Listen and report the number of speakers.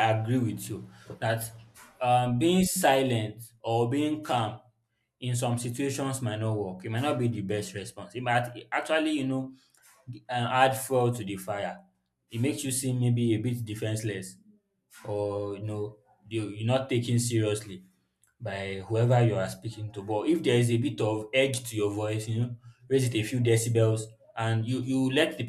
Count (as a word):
one